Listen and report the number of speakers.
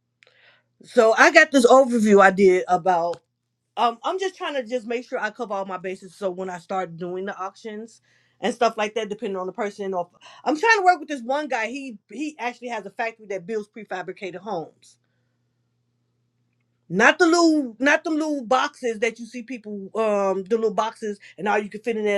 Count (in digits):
1